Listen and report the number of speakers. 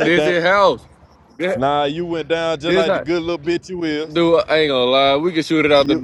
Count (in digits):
2